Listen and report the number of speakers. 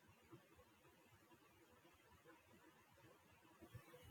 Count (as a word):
zero